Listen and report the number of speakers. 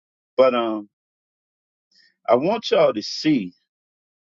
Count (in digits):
1